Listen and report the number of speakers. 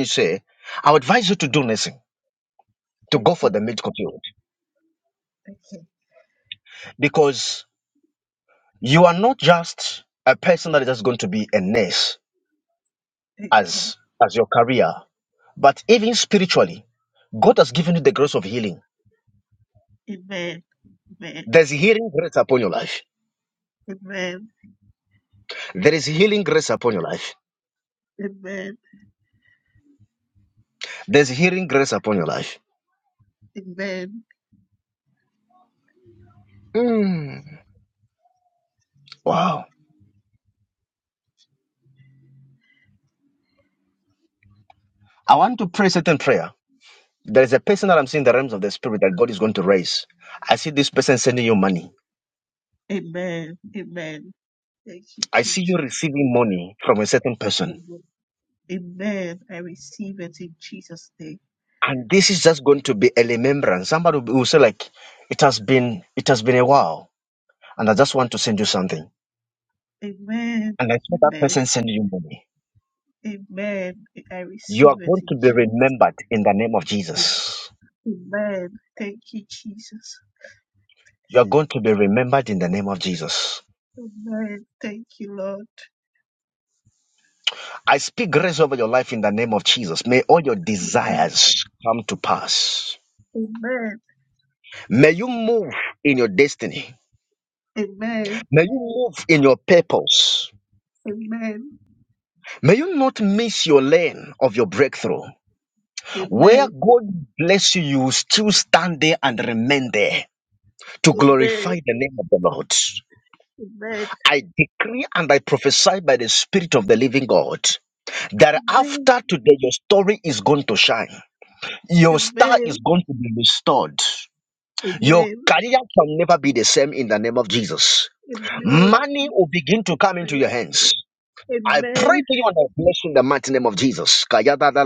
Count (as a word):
two